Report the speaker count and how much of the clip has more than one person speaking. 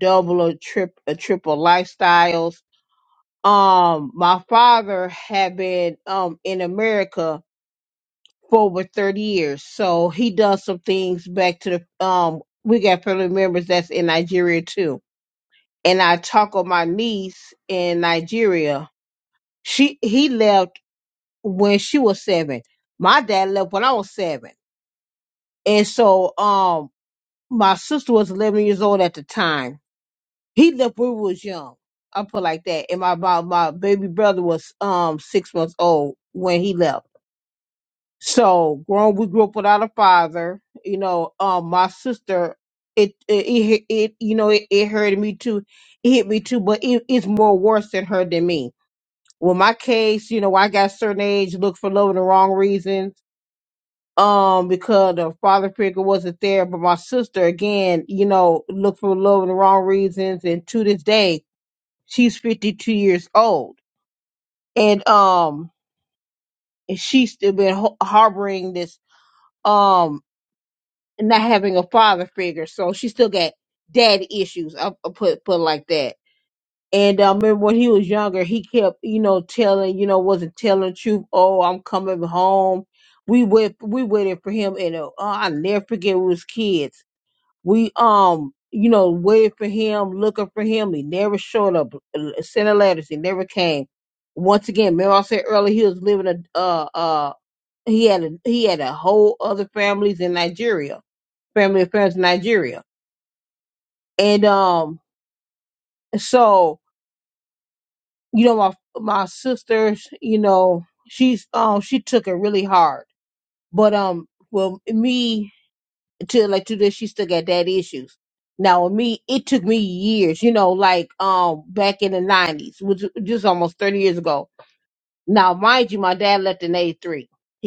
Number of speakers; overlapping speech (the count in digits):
1, no overlap